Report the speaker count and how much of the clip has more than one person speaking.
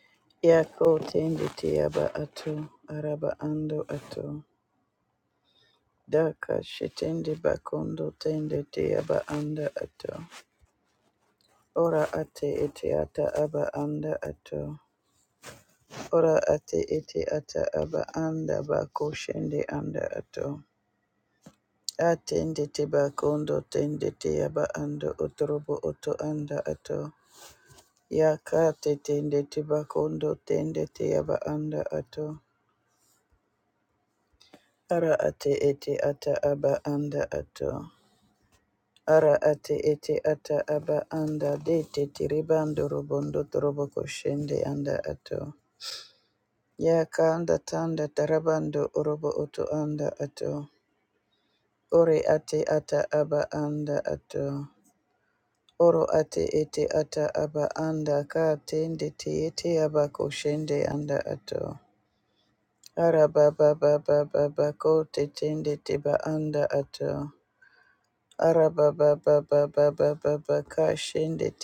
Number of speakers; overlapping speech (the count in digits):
1, no overlap